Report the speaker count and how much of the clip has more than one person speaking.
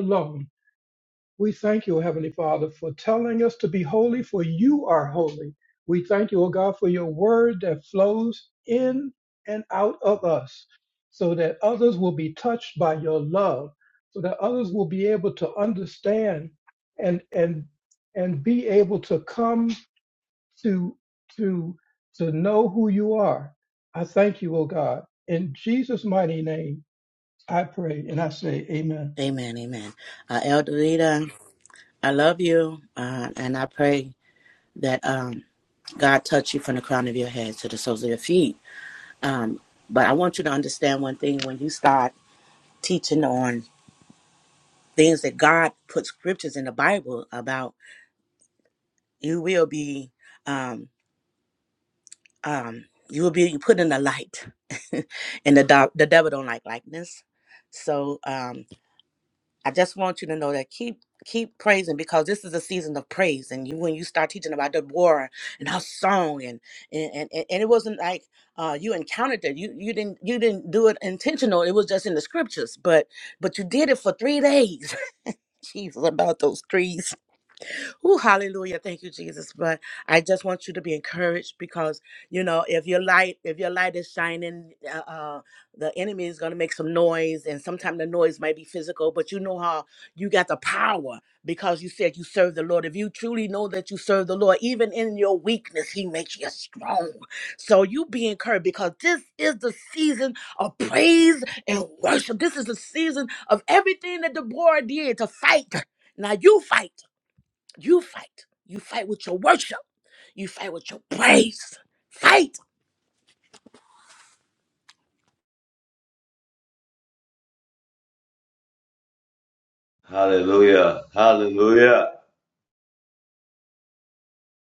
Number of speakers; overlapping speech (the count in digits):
3, no overlap